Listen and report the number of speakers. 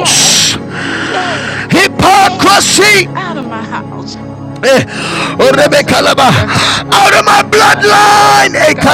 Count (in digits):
2